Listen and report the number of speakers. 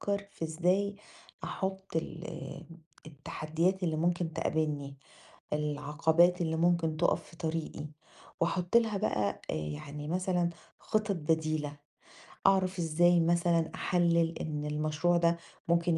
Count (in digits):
1